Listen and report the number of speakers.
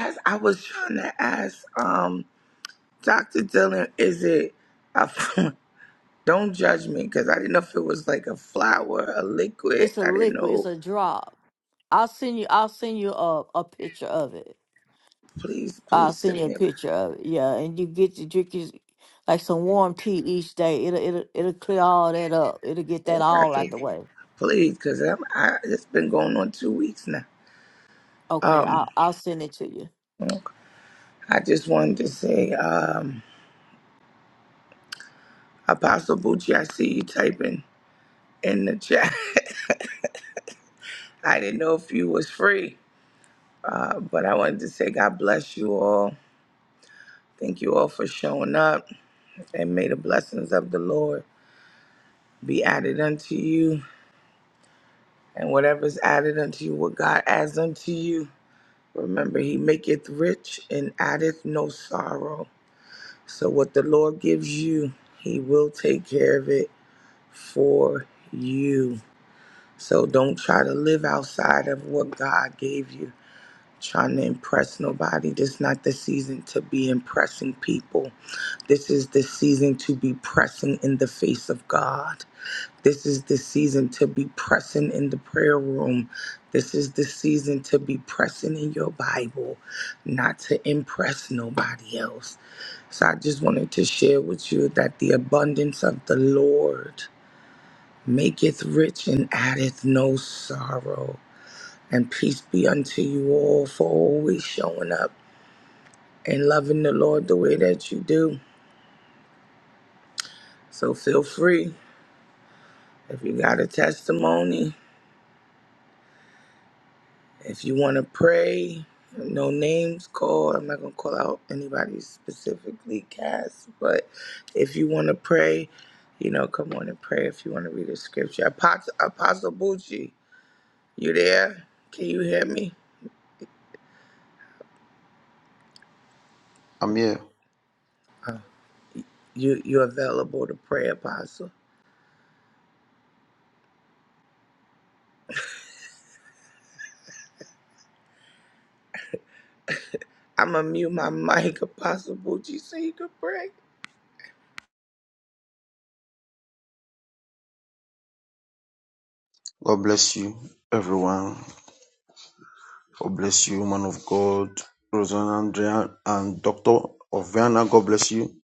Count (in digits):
3